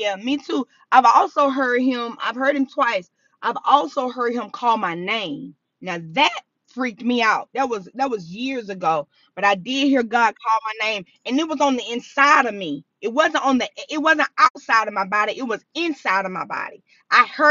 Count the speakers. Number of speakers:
1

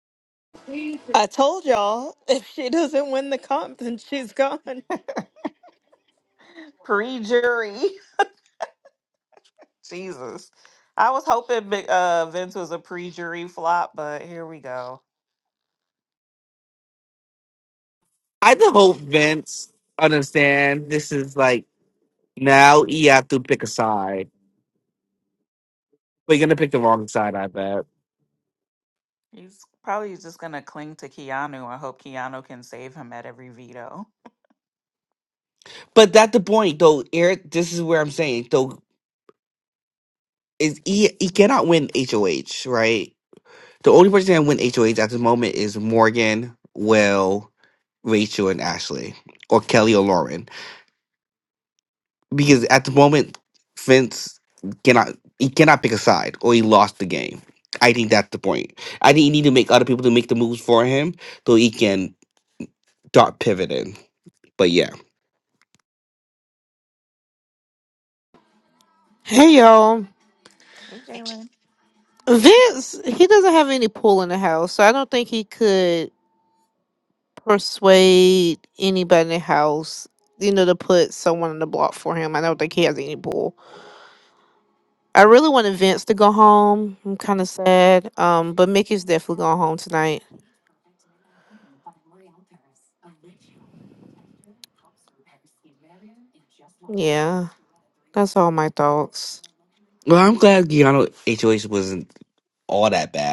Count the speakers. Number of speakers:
4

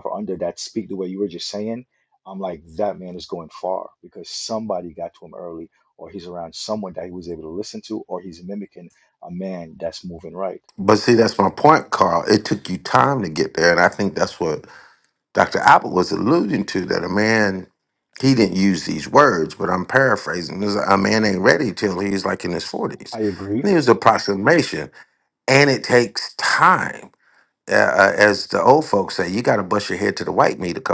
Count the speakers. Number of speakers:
2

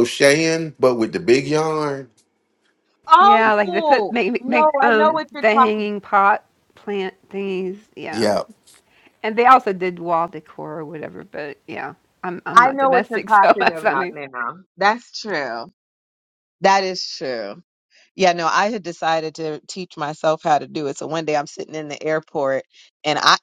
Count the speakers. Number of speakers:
3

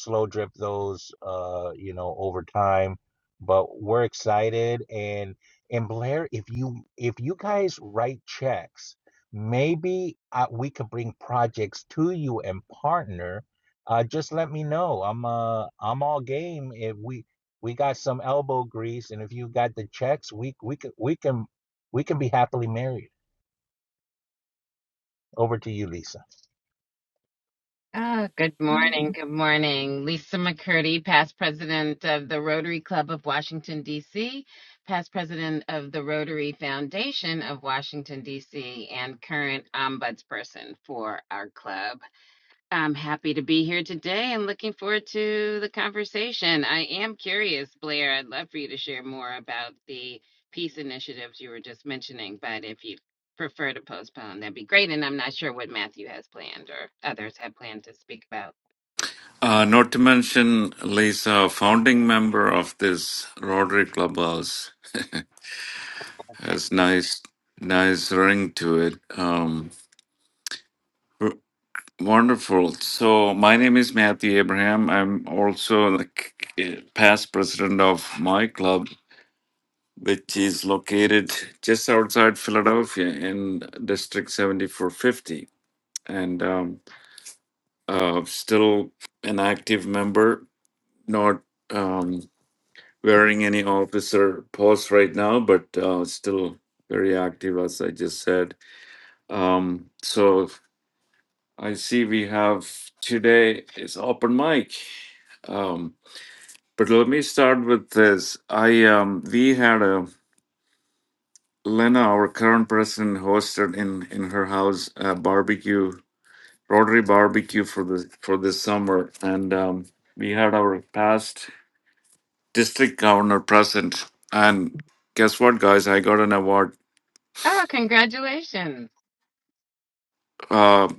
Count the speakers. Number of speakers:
3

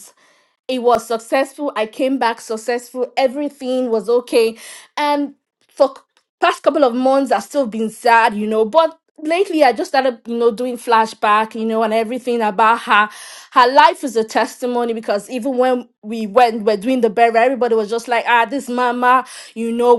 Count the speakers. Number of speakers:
1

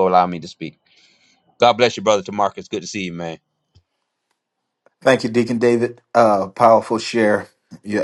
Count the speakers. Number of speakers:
2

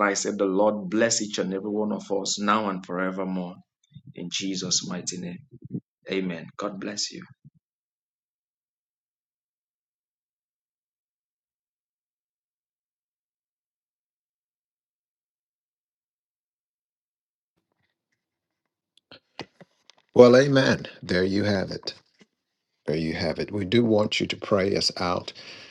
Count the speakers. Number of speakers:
2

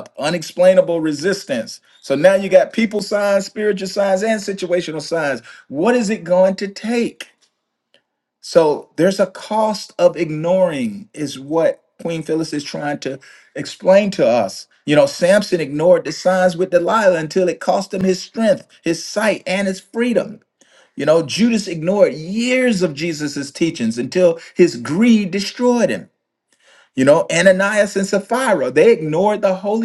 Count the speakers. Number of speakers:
1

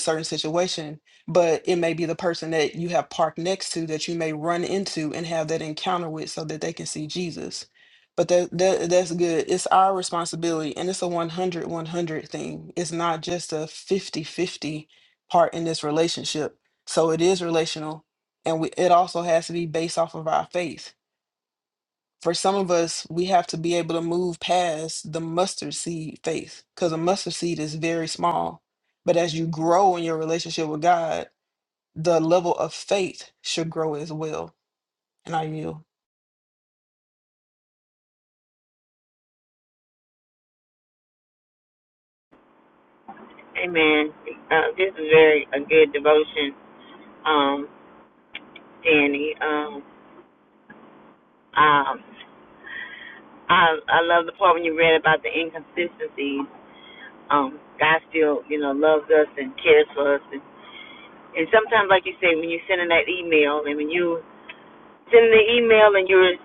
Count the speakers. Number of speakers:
2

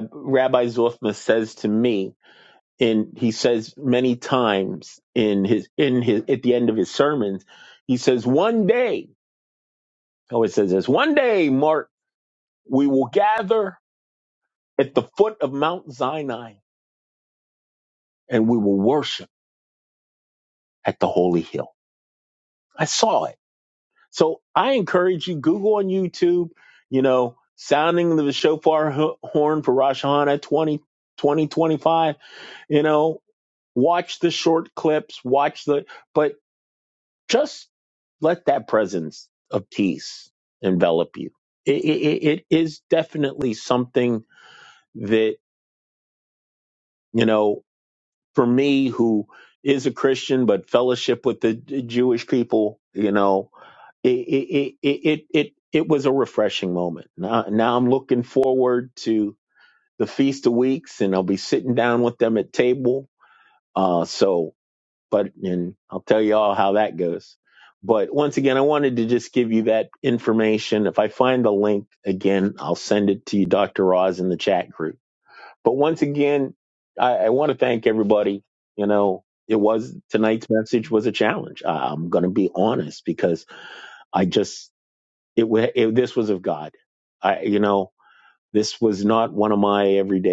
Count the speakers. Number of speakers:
1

